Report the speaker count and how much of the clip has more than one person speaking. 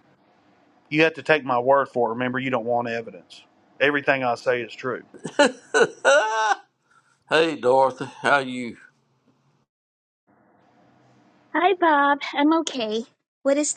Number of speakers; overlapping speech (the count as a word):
three, no overlap